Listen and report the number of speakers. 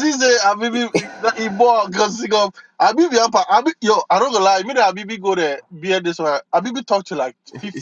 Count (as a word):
one